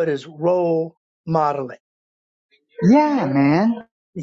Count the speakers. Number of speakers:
two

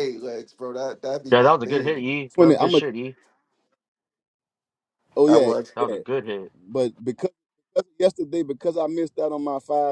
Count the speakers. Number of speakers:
three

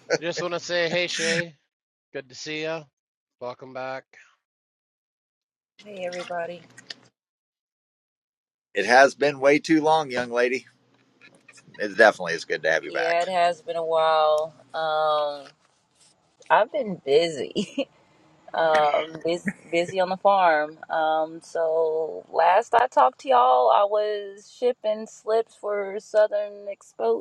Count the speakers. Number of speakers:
three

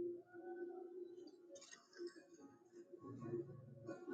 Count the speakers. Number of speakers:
zero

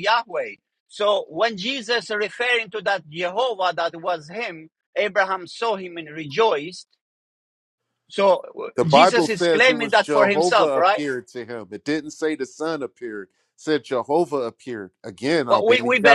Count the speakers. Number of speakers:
two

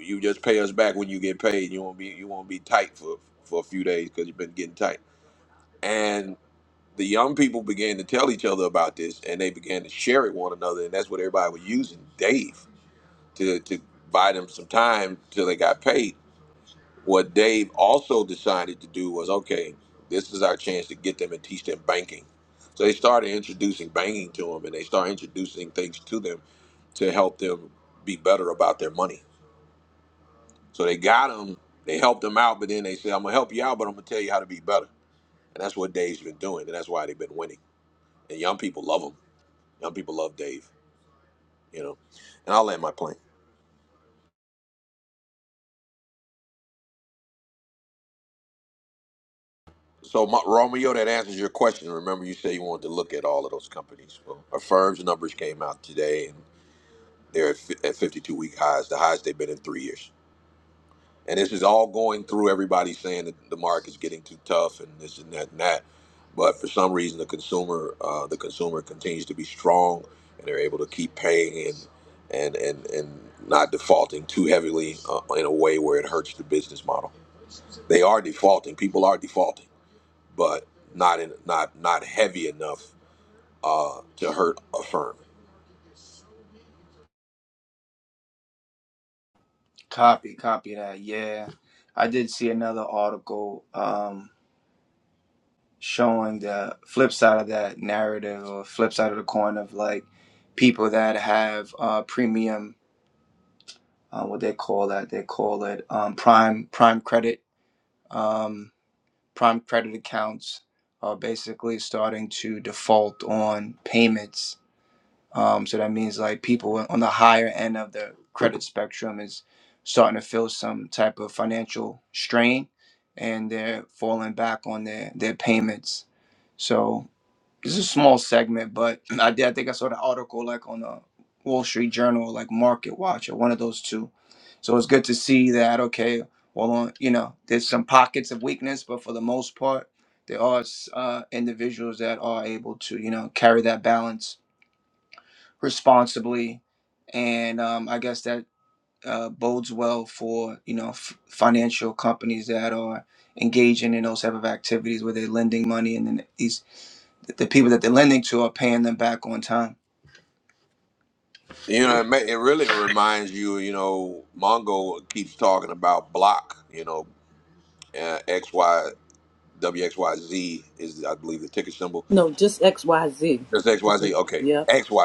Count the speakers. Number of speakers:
three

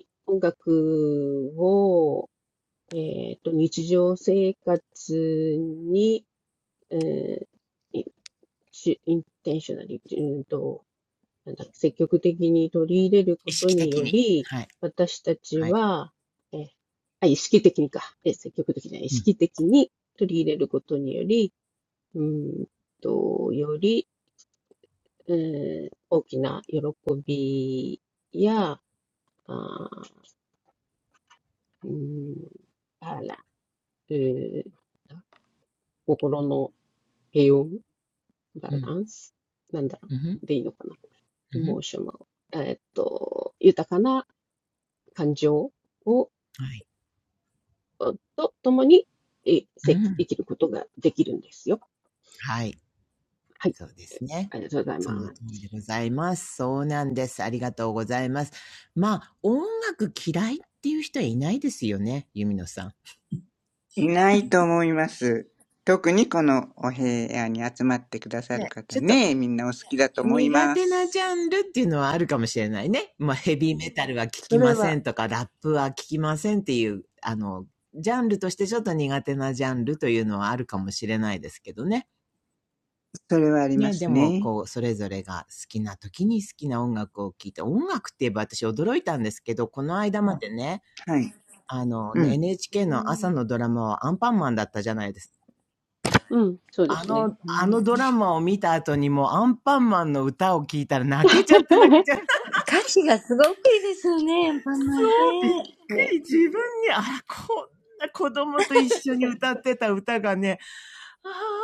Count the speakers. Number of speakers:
four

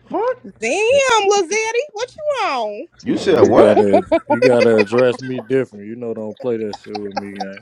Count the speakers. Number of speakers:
three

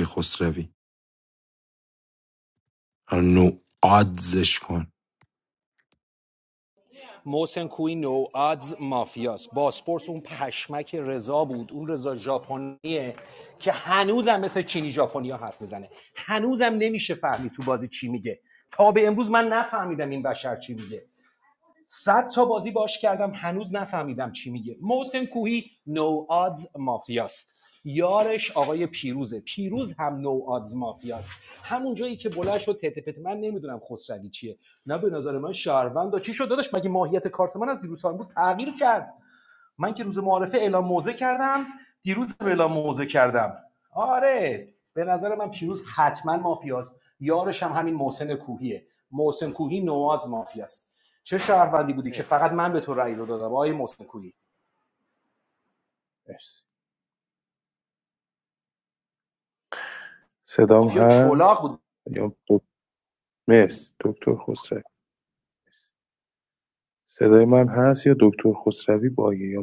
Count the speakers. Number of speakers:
three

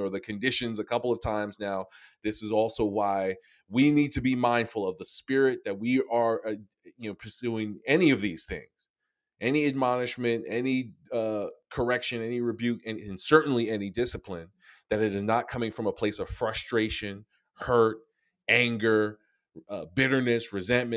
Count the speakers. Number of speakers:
one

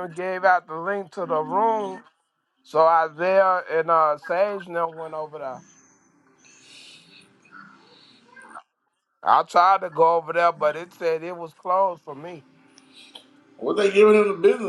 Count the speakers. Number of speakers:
two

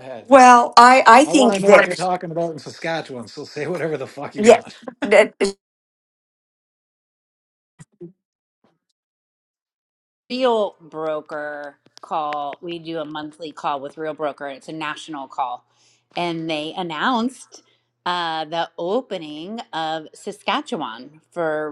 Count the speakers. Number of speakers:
three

